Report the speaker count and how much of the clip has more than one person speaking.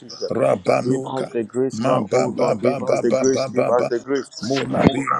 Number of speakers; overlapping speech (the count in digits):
2, about 57%